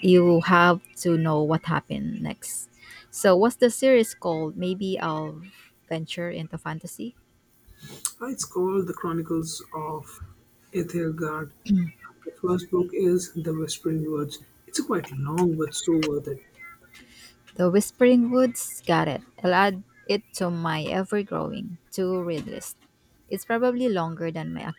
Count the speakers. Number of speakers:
two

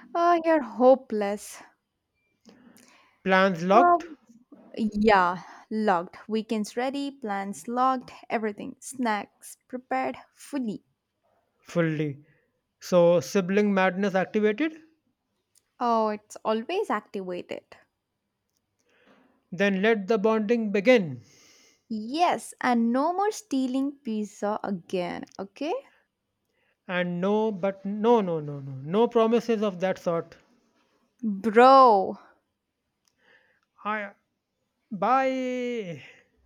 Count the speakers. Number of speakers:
two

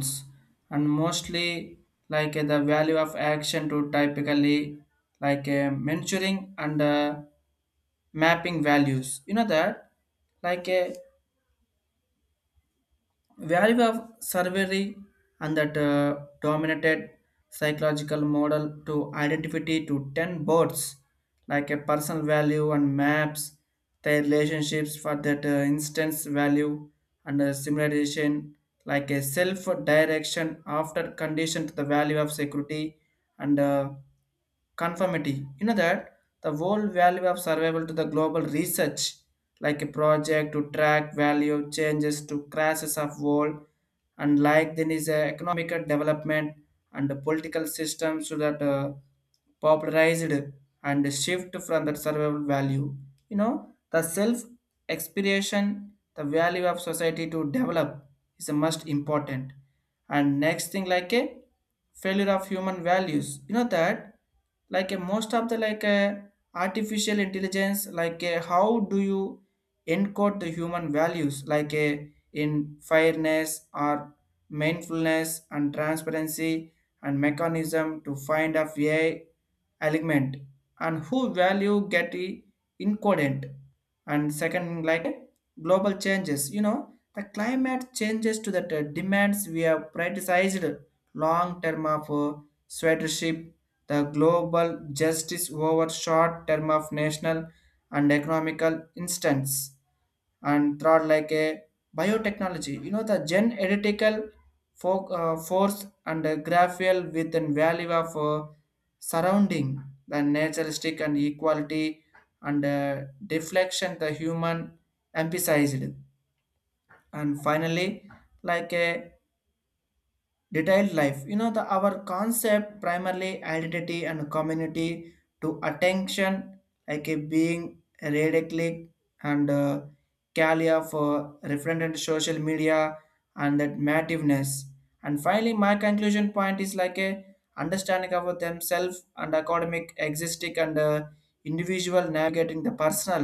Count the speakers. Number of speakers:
one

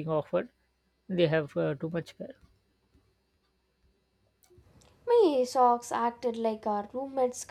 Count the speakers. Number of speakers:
two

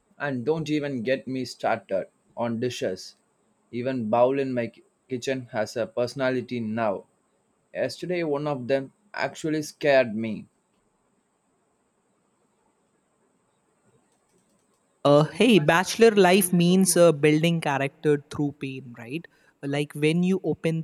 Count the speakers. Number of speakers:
two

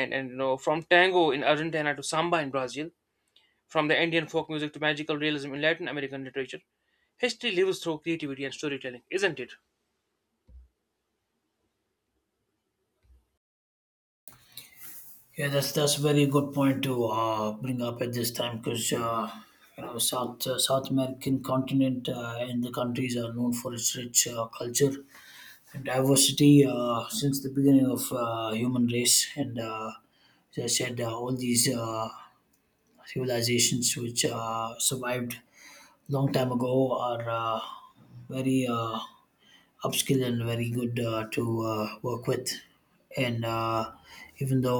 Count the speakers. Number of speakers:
two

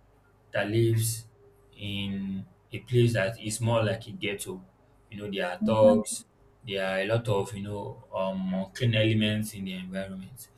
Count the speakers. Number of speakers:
one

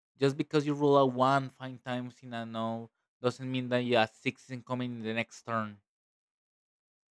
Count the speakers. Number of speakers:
one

